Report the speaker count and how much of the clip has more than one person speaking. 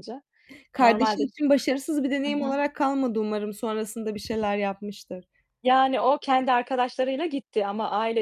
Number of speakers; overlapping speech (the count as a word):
two, about 9%